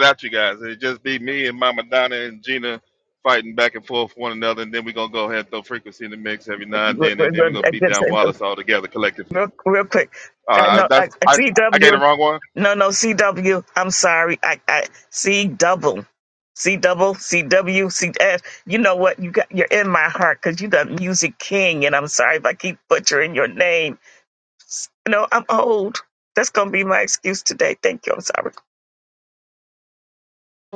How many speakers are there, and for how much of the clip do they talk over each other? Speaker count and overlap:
2, about 7%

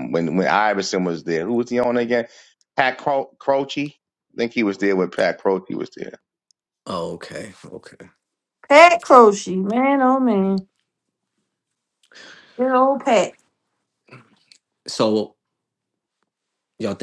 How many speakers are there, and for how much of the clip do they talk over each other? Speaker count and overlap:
3, no overlap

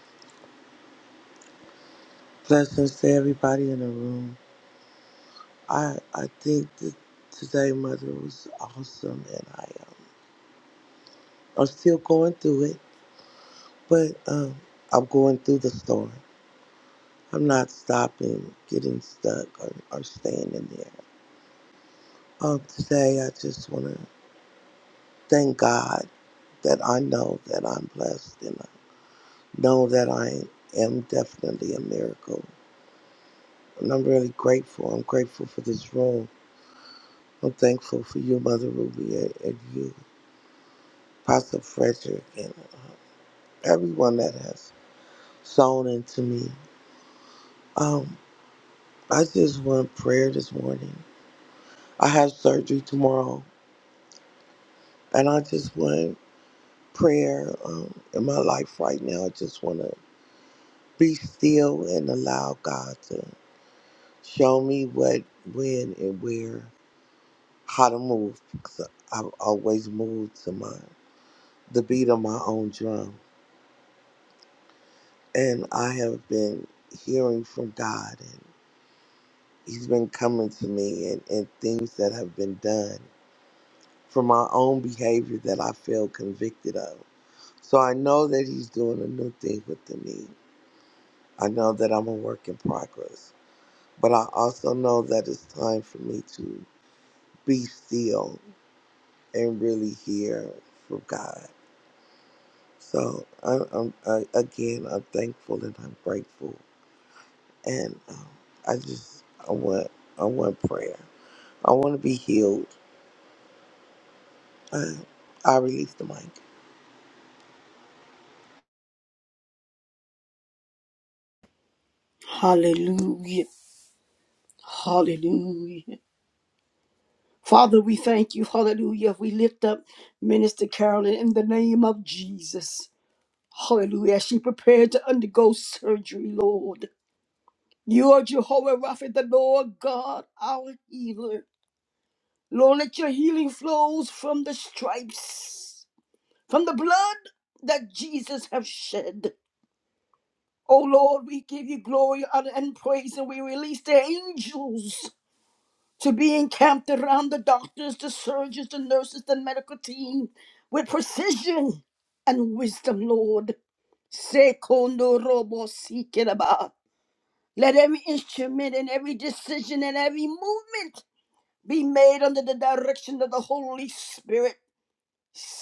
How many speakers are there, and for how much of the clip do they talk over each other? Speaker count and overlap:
2, no overlap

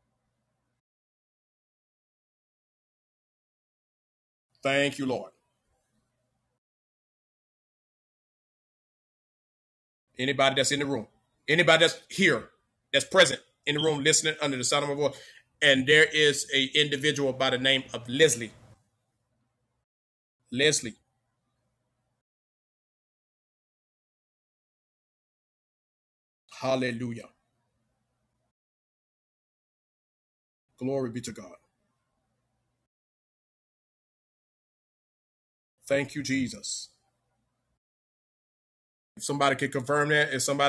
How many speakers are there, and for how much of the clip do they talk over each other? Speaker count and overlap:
1, no overlap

